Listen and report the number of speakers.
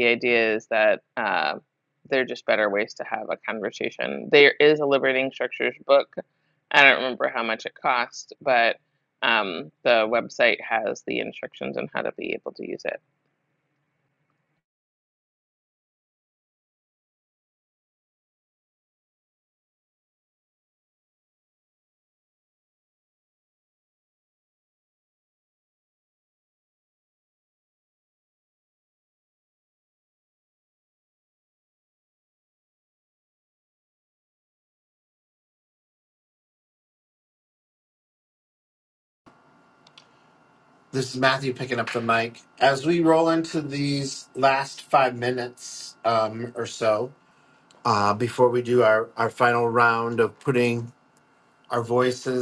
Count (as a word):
two